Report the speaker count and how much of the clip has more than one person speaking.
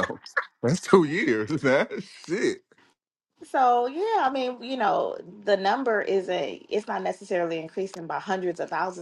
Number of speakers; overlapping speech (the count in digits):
2, no overlap